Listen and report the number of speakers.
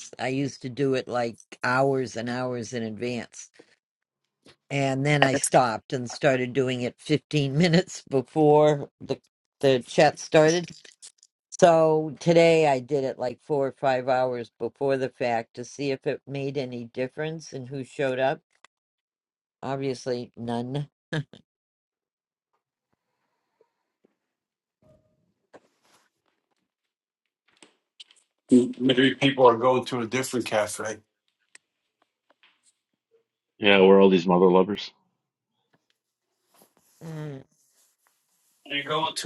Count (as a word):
three